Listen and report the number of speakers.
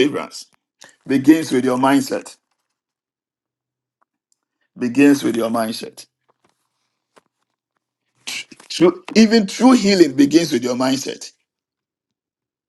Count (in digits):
1